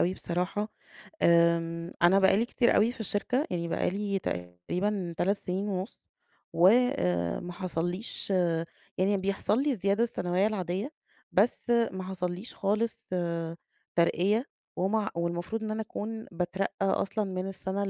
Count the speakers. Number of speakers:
1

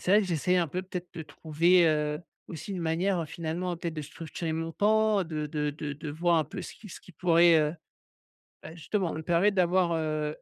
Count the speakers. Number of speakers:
1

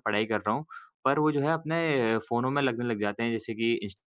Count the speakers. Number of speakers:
1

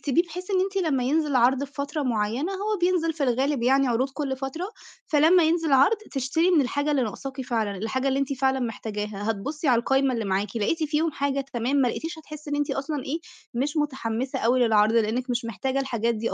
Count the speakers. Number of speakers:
1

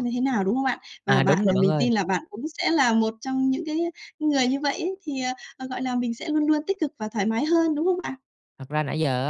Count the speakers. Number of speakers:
2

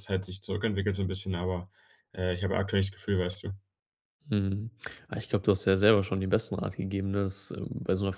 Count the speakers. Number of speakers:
2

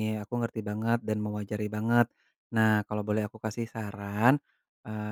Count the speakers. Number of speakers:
1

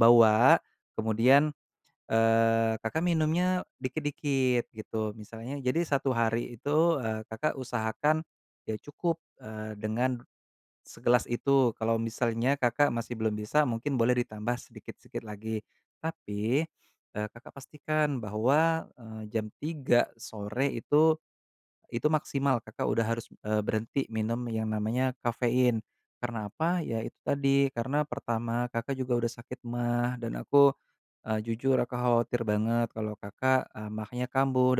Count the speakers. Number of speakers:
1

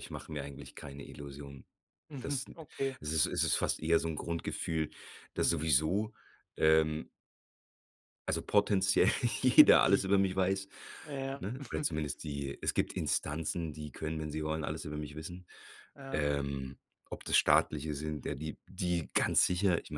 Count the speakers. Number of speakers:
2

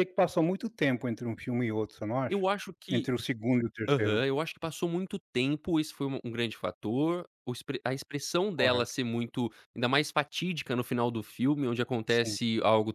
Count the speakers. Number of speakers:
2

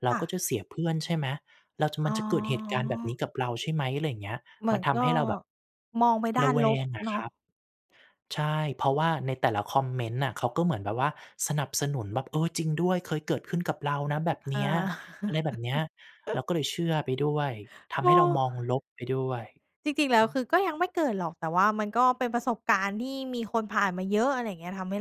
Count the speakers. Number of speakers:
2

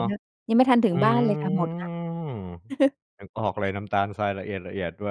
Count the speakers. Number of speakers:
2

